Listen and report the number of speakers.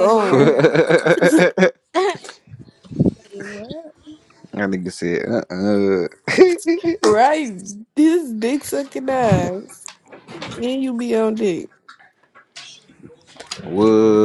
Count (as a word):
three